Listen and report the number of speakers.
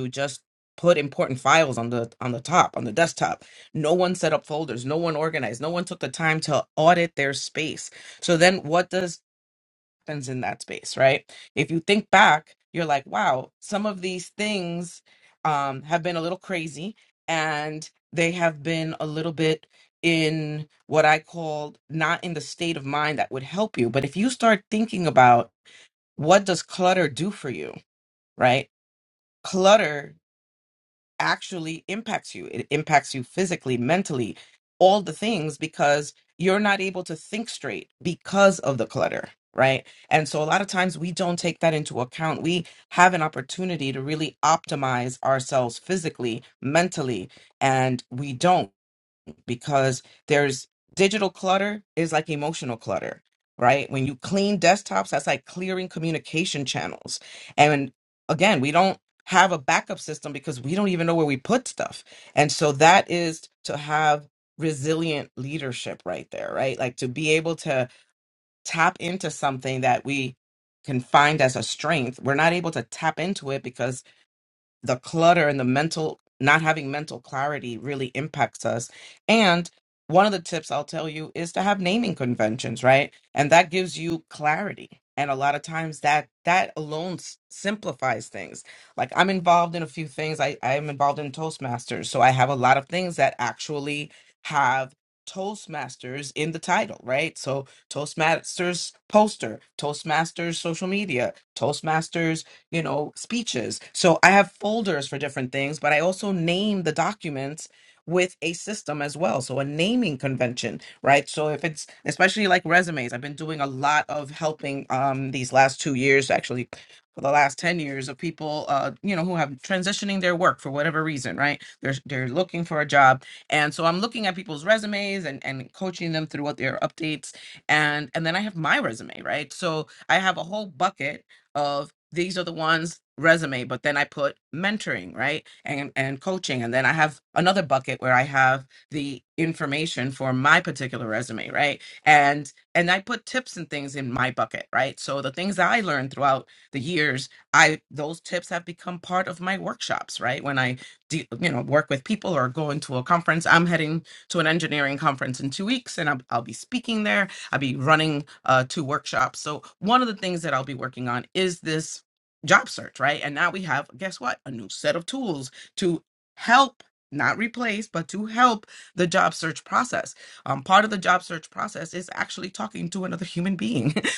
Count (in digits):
1